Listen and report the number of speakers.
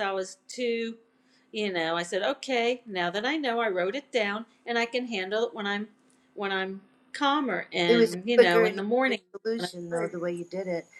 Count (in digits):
2